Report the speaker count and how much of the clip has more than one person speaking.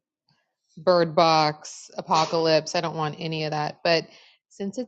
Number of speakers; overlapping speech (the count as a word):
one, no overlap